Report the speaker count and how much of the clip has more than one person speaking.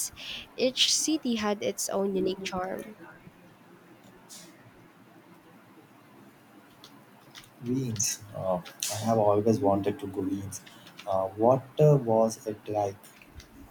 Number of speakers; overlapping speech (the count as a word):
two, no overlap